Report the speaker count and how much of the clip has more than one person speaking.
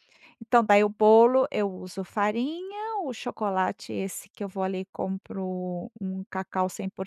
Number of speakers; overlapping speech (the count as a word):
one, no overlap